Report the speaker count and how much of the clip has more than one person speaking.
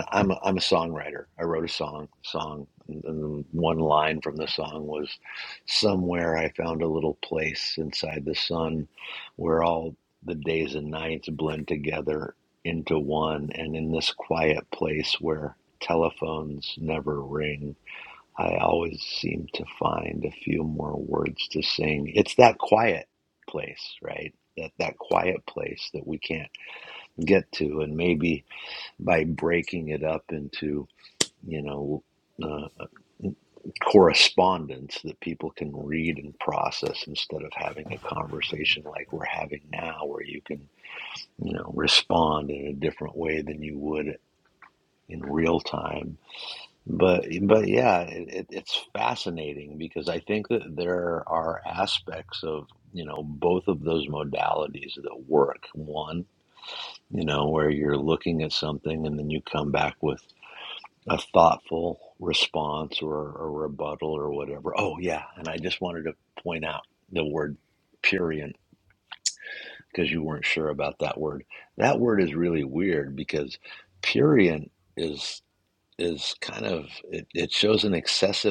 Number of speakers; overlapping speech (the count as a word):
one, no overlap